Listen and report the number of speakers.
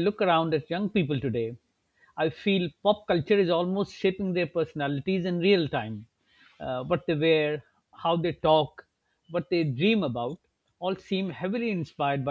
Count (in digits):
1